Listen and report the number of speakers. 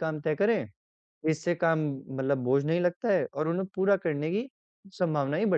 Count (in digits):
1